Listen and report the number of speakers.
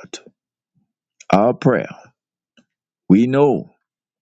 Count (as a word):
one